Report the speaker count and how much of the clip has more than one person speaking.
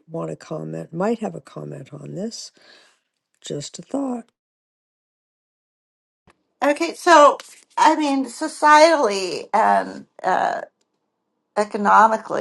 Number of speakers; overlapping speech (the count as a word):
two, no overlap